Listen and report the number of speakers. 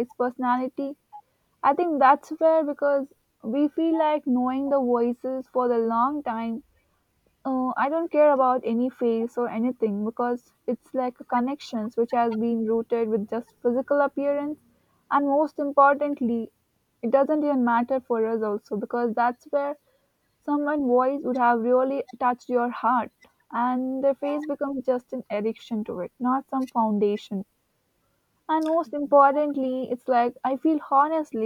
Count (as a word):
one